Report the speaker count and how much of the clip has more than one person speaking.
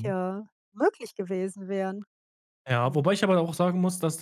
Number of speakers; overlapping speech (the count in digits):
2, about 5%